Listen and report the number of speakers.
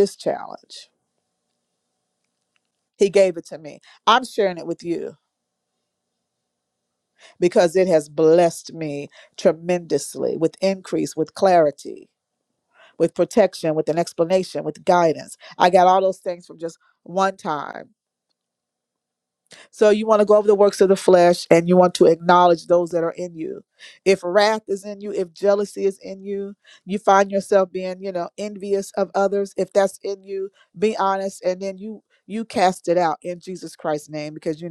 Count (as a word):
one